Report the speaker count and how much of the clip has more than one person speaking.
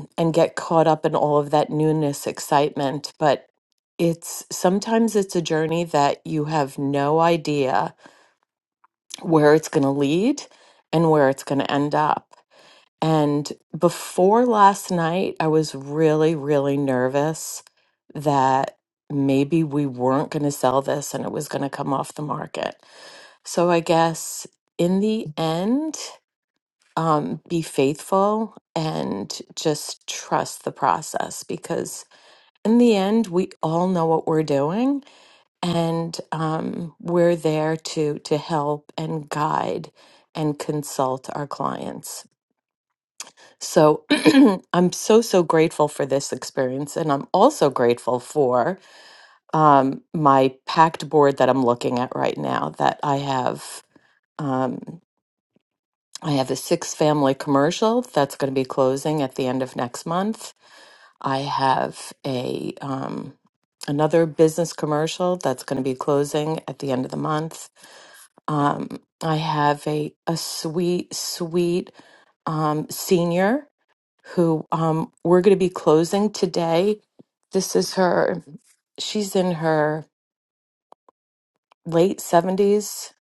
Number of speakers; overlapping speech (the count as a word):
one, no overlap